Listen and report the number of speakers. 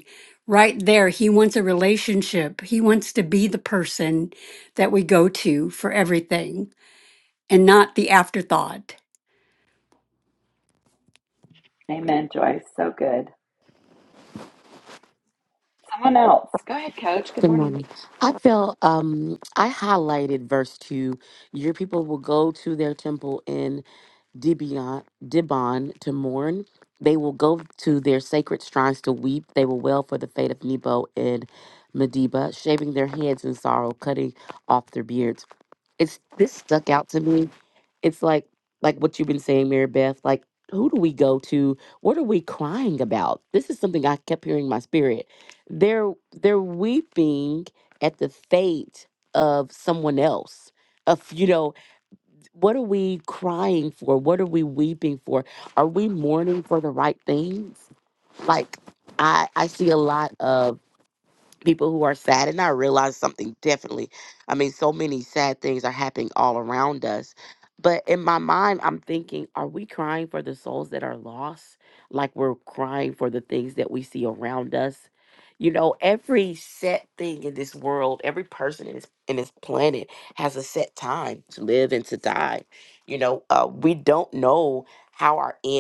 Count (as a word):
three